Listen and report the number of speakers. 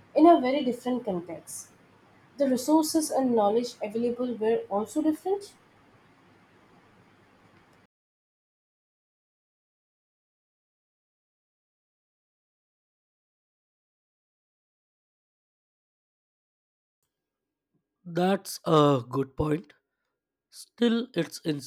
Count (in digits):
2